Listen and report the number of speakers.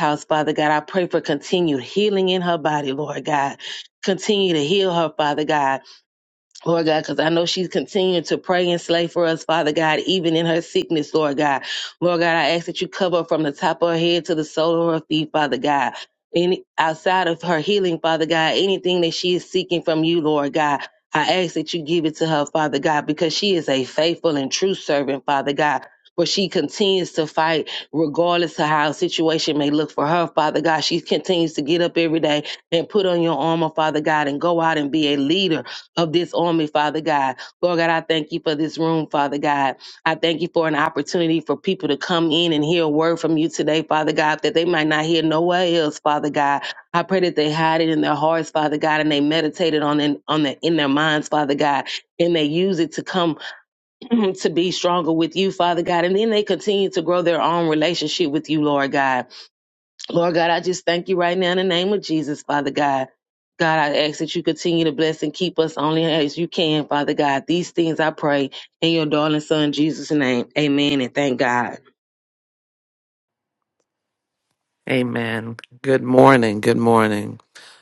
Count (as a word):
two